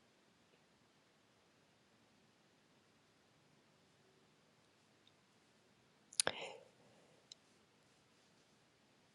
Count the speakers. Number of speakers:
0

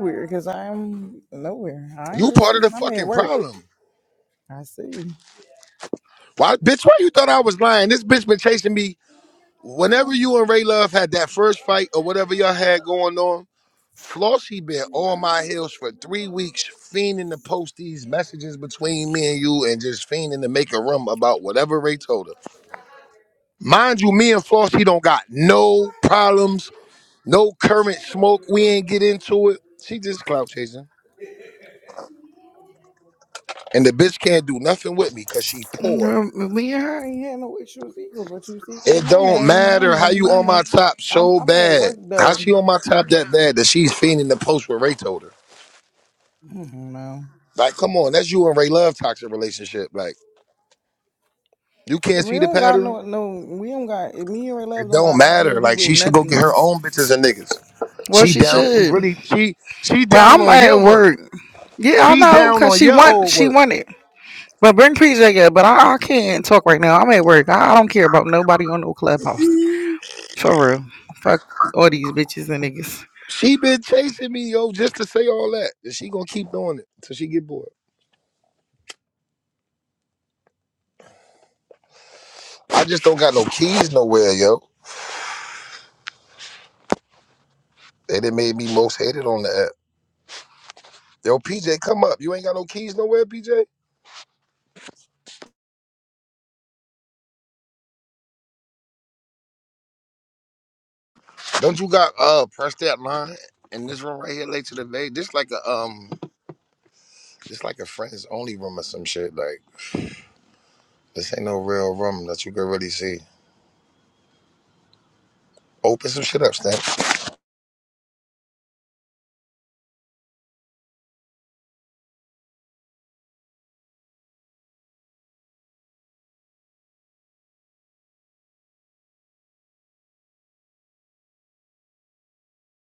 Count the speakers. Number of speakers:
2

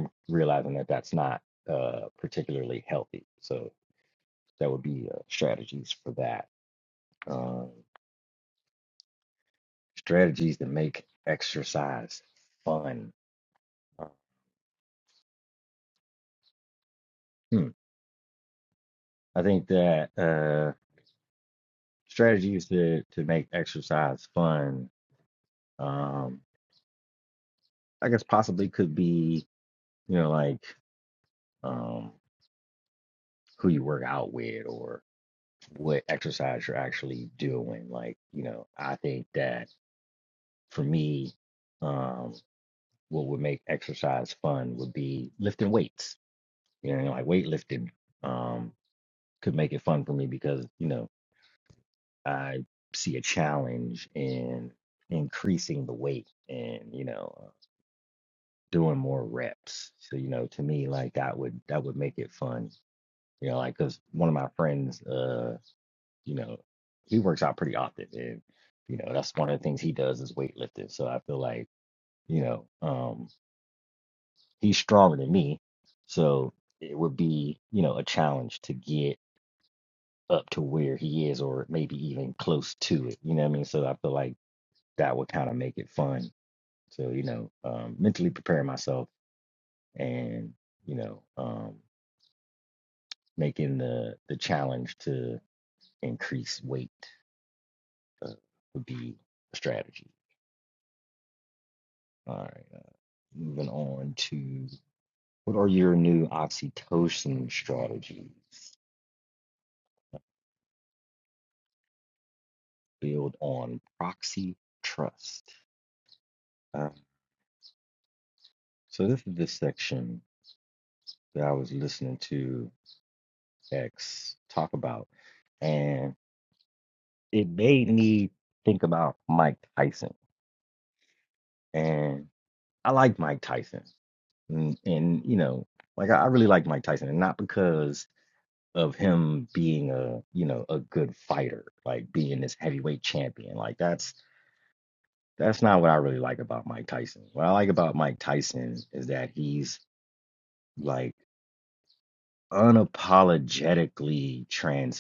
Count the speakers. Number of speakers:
1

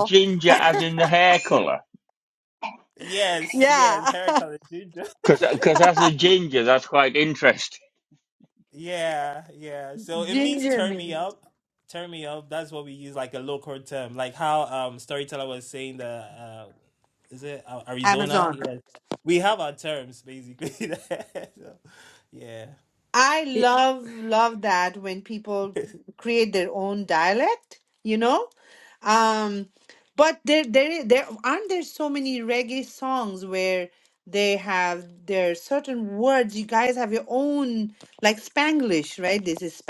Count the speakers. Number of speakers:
3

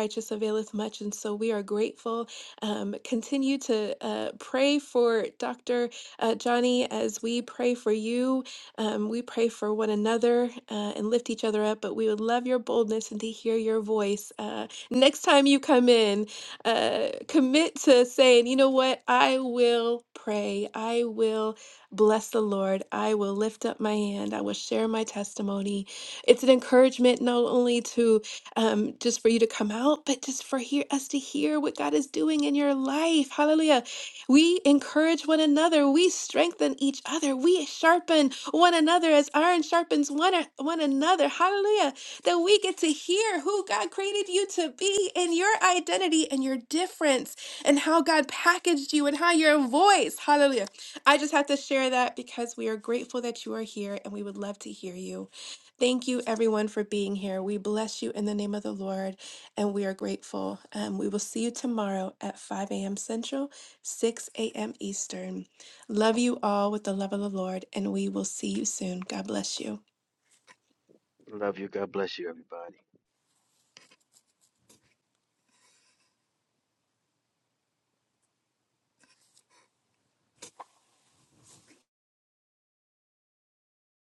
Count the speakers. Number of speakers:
2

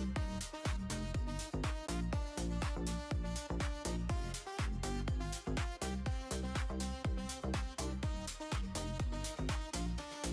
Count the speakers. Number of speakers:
0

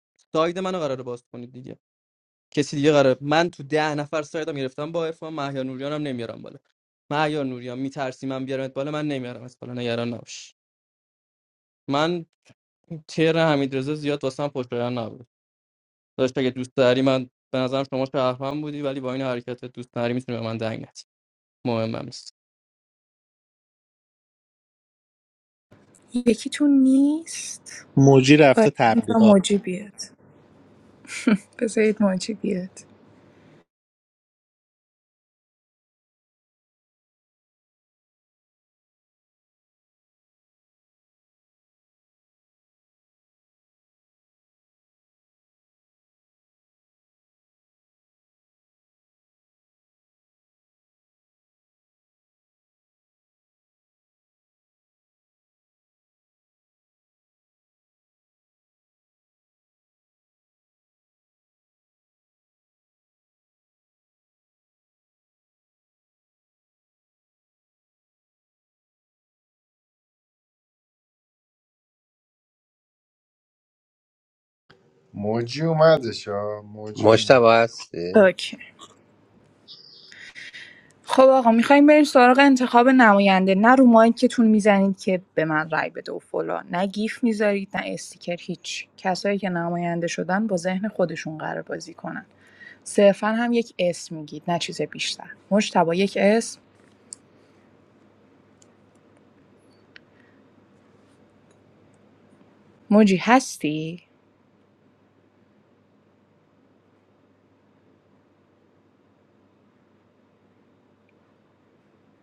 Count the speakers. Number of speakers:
5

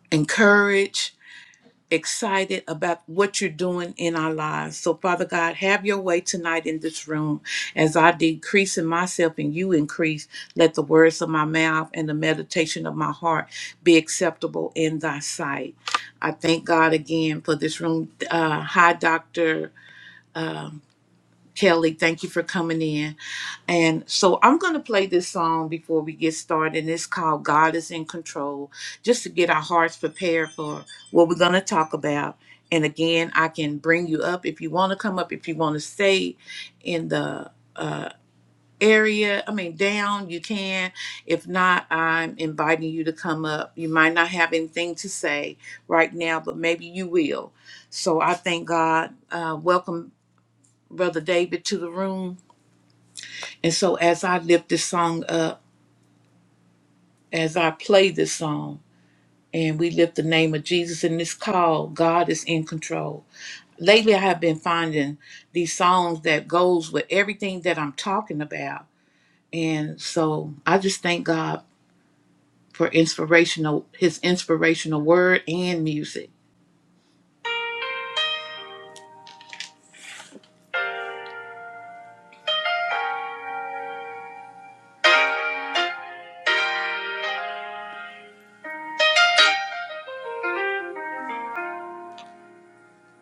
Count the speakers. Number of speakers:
1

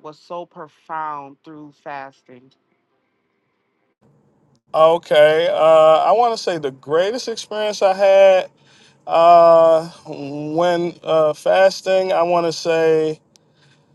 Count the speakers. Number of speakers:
2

